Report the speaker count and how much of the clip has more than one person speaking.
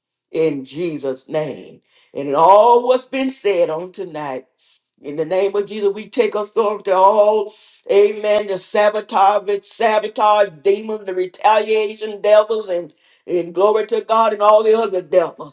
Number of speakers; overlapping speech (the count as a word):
one, no overlap